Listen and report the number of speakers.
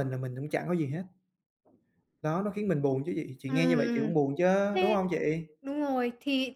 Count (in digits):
2